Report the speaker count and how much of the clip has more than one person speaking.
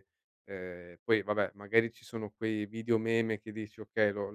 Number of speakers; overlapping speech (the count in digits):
1, no overlap